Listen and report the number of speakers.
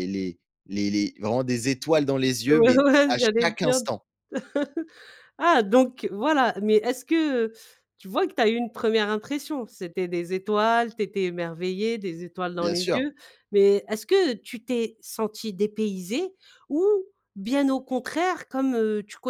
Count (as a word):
two